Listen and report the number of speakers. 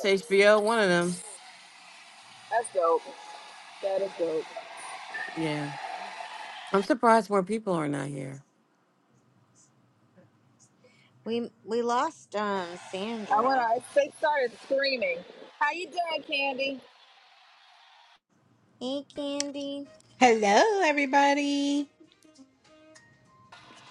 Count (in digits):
4